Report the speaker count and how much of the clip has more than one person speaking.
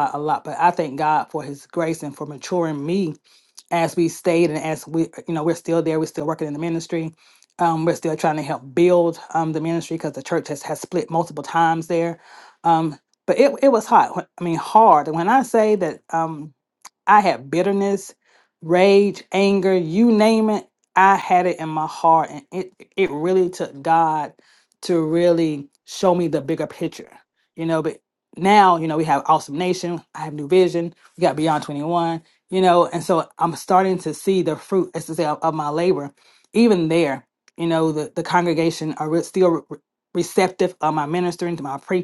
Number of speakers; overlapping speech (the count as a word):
one, no overlap